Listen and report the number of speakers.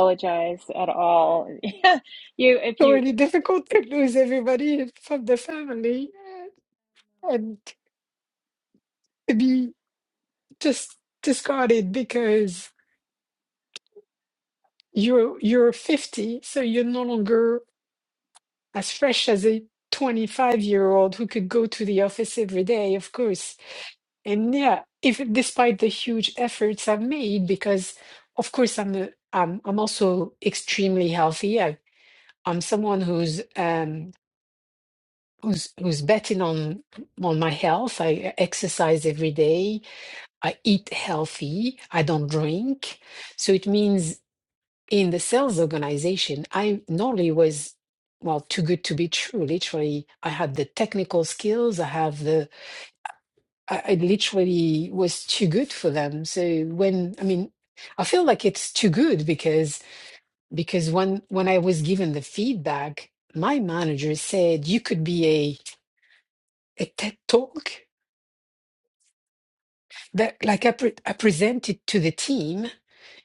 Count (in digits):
2